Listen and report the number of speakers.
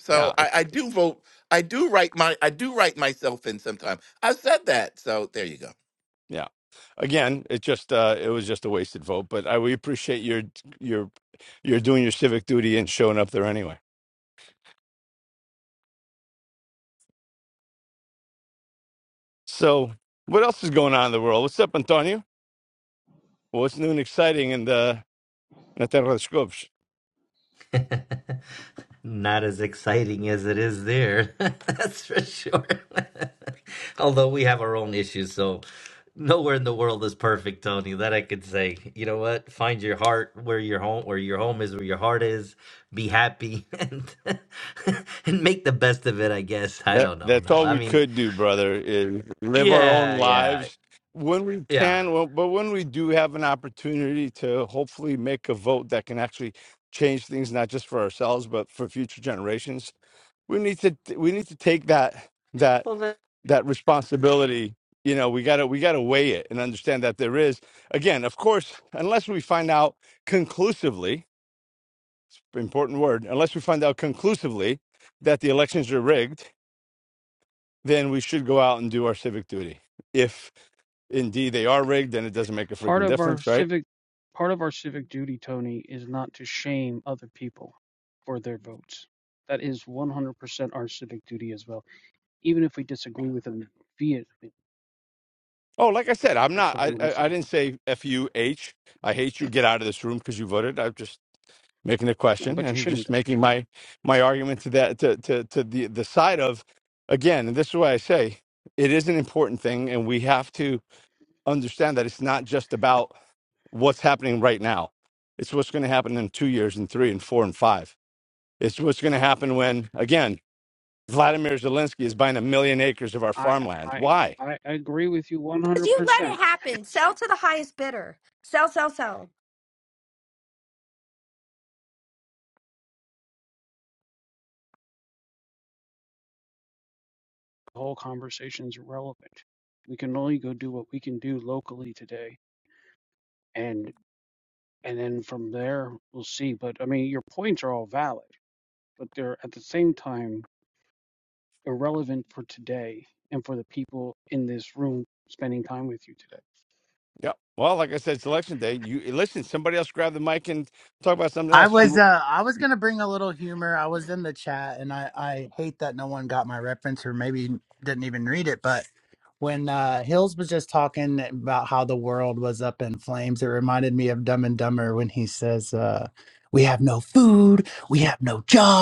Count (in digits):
6